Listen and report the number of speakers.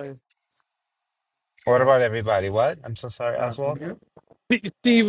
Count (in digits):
2